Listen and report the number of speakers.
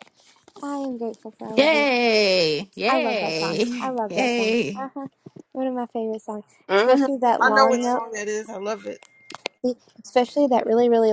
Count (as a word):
three